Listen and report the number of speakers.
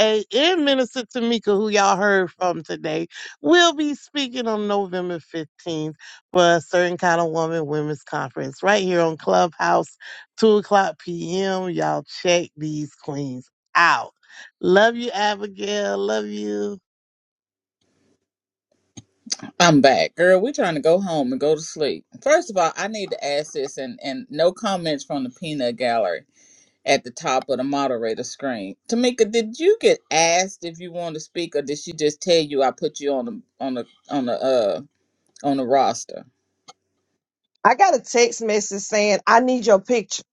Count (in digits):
3